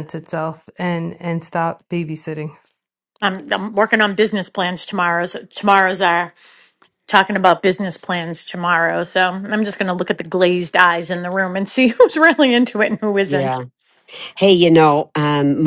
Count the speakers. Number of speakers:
3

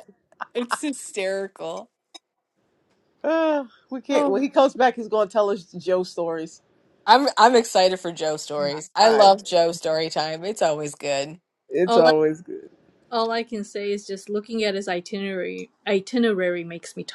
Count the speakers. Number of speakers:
3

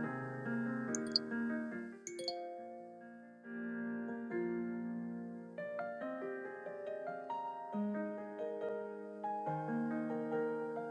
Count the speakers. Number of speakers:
0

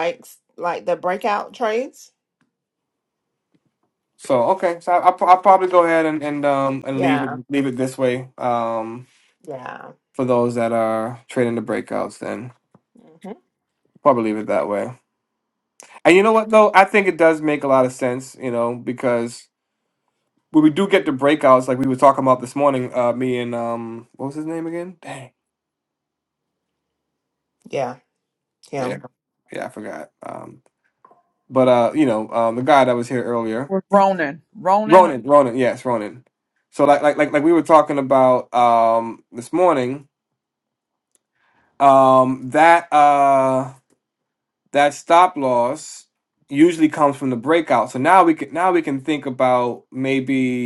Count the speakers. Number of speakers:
3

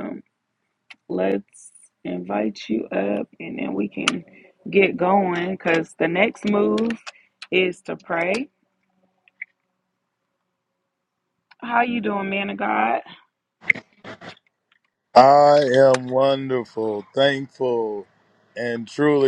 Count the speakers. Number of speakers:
2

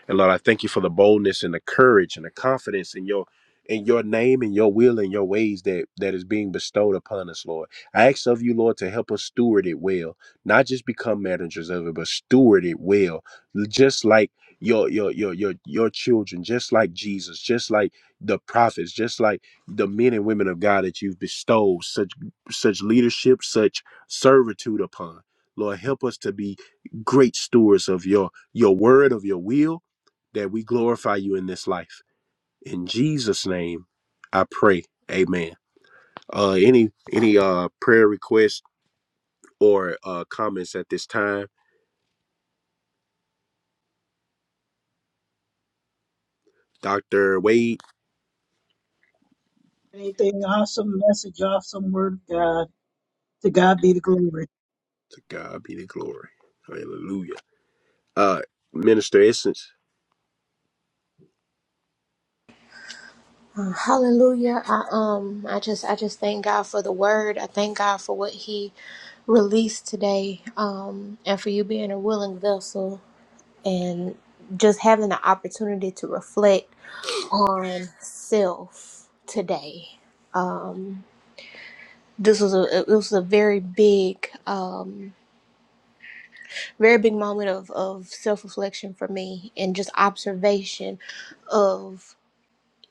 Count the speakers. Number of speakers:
3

